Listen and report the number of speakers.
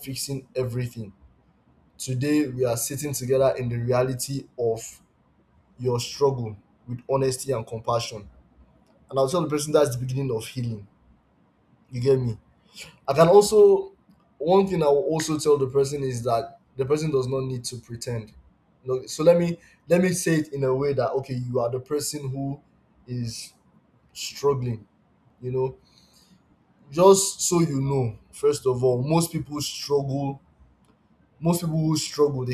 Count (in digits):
1